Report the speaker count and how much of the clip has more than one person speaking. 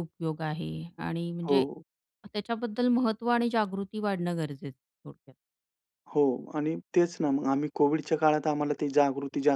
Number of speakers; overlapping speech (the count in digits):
2, about 2%